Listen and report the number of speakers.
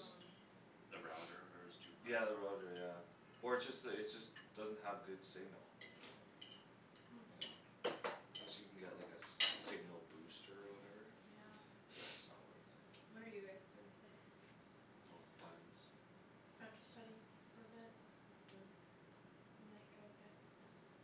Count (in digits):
4